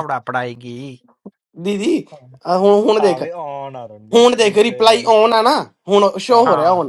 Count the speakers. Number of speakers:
3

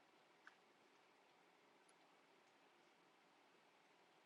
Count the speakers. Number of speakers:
0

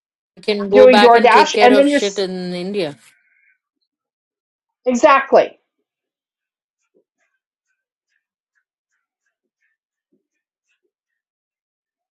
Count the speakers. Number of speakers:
2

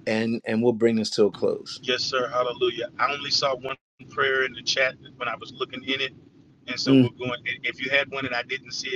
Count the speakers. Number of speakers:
2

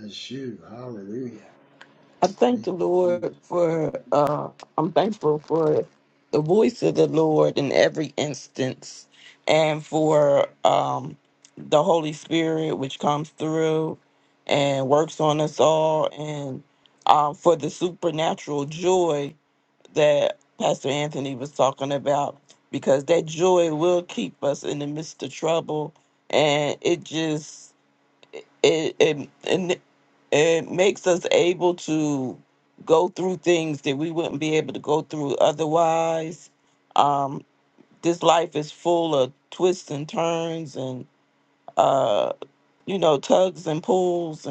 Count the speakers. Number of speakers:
2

